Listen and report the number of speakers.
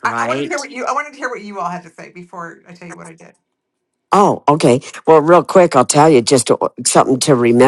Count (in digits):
2